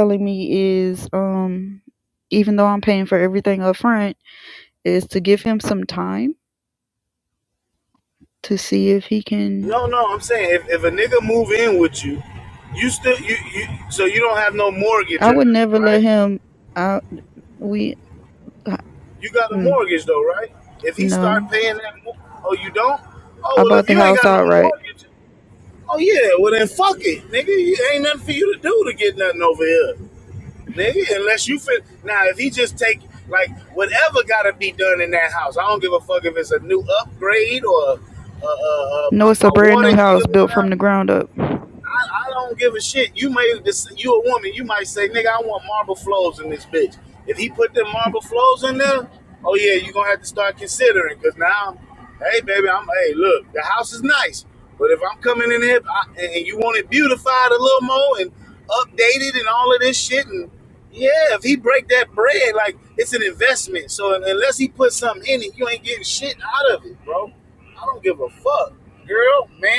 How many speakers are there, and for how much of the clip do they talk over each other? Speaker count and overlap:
2, about 6%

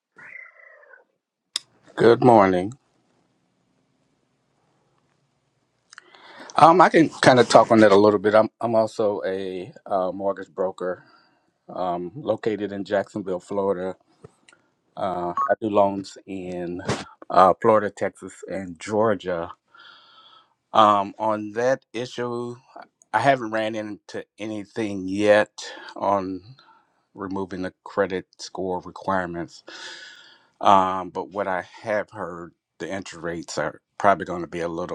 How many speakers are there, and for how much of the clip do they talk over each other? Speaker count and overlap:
1, no overlap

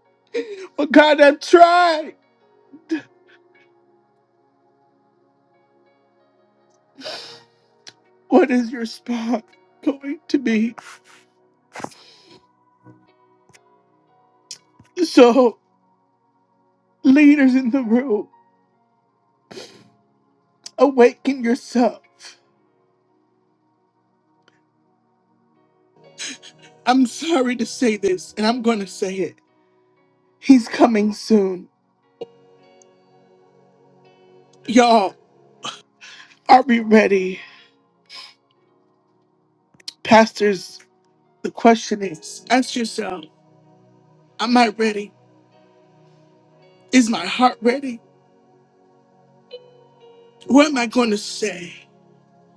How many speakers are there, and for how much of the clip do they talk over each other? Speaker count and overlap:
1, no overlap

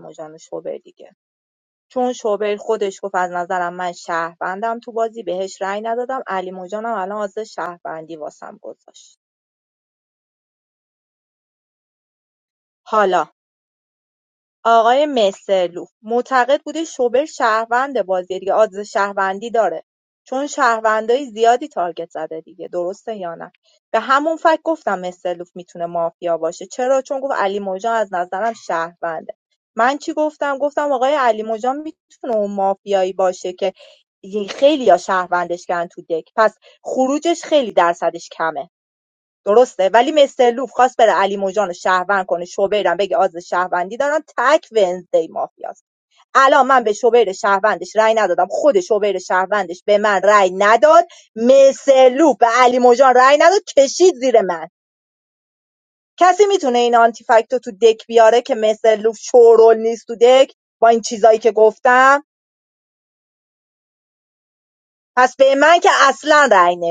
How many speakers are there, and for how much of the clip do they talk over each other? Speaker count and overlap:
1, no overlap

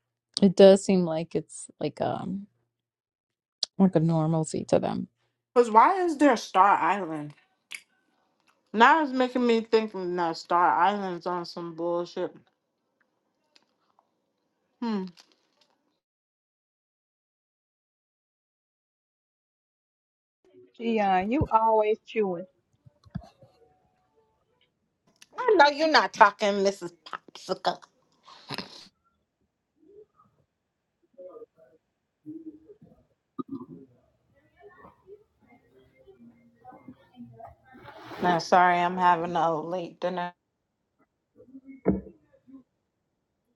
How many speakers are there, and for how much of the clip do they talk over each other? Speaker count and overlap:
3, no overlap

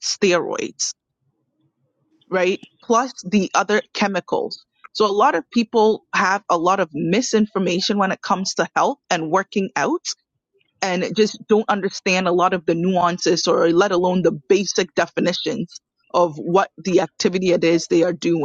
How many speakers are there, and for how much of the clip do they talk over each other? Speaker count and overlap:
1, no overlap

